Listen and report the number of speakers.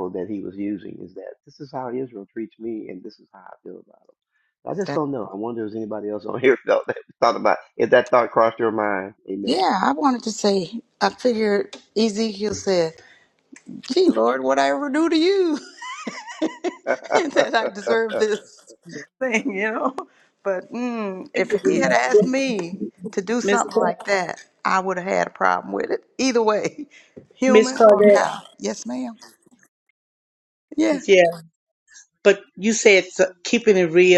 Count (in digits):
3